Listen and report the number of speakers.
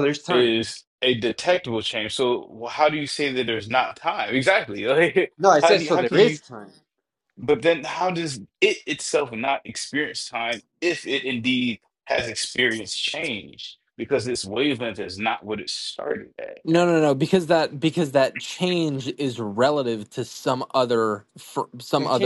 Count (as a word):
three